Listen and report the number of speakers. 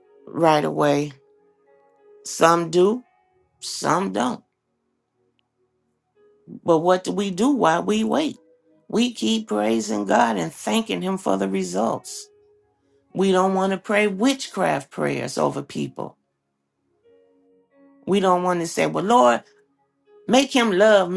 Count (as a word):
one